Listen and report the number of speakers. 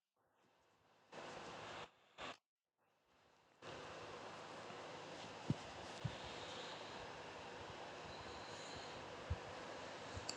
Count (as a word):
zero